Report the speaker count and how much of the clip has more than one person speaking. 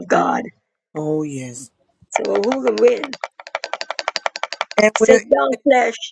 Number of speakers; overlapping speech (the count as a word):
two, about 5%